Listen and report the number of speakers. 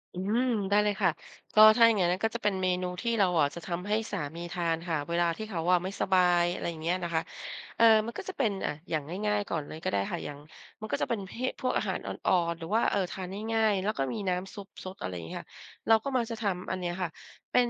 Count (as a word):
one